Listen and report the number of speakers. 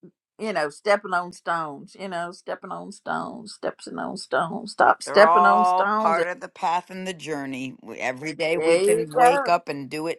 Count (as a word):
two